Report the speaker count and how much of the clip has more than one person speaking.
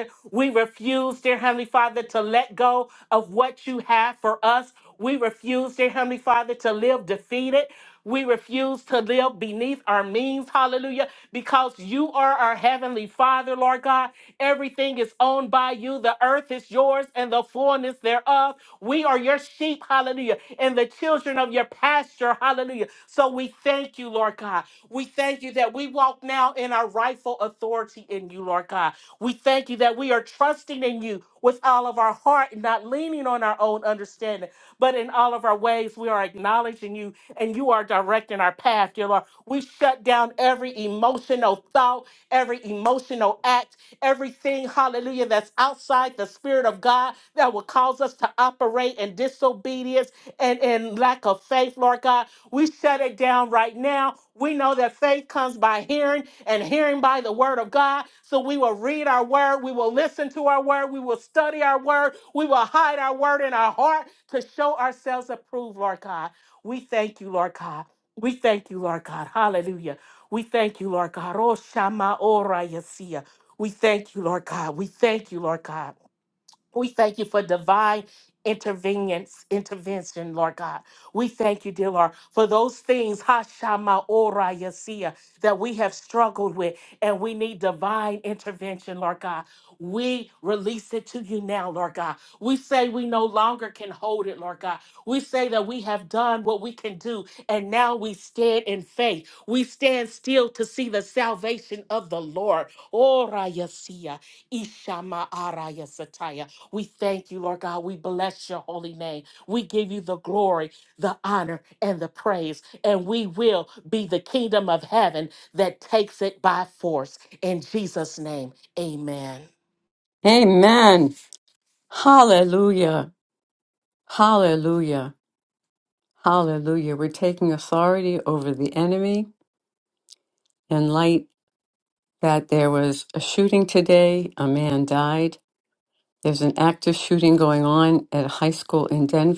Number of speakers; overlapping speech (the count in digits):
2, no overlap